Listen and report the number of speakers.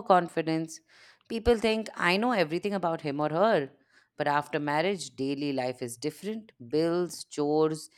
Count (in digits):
1